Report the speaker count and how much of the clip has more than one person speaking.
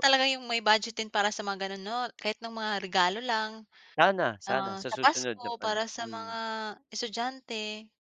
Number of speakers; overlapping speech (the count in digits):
2, about 22%